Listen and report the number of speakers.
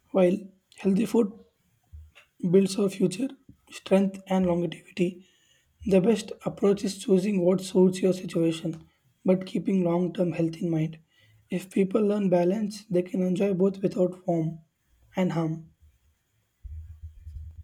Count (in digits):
1